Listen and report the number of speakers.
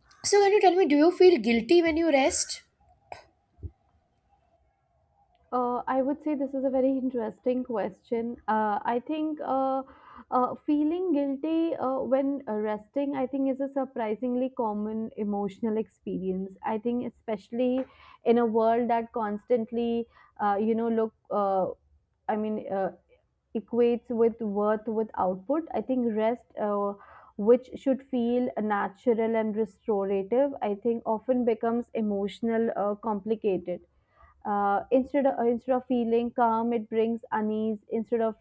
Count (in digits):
2